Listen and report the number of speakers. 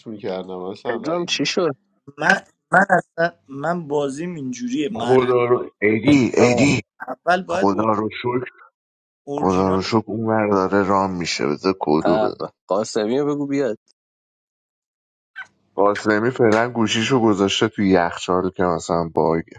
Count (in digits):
4